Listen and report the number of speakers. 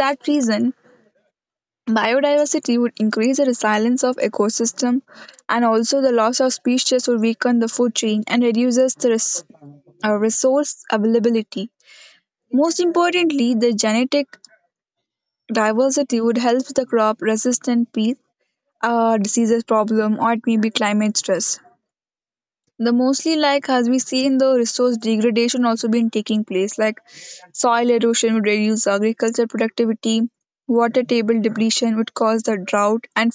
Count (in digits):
1